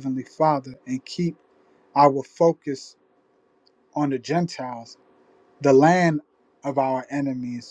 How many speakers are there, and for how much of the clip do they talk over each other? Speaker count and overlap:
1, no overlap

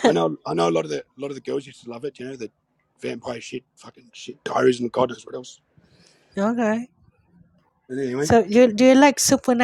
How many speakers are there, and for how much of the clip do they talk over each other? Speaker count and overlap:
2, under 1%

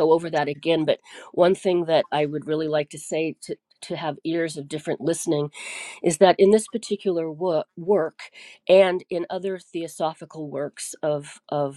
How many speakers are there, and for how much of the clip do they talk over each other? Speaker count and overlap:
1, no overlap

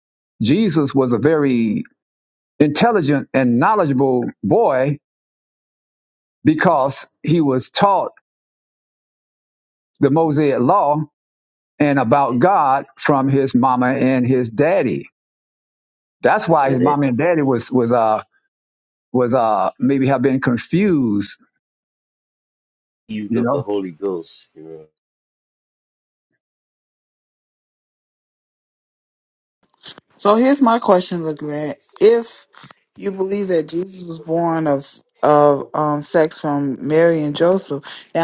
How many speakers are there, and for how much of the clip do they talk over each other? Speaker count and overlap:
3, about 2%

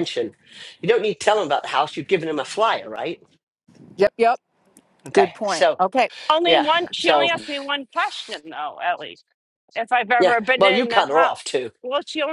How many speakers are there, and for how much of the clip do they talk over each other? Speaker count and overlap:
3, about 21%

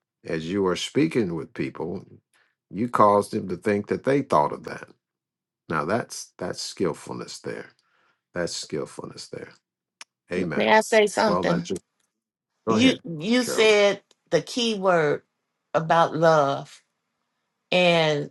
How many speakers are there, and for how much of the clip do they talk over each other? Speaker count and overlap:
2, about 6%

